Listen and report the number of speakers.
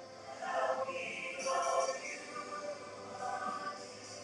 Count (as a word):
zero